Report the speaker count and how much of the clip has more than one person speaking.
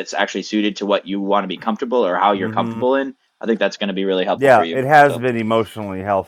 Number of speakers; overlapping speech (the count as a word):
two, about 14%